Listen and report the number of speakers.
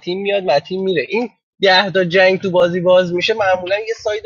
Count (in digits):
1